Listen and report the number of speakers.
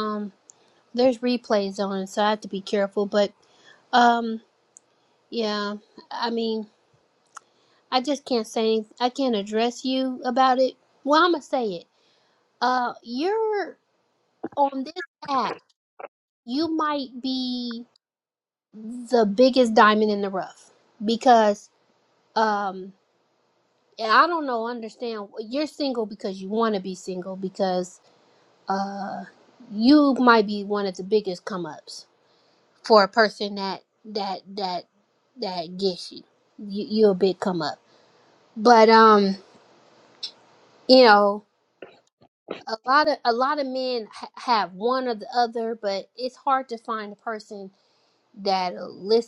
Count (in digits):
1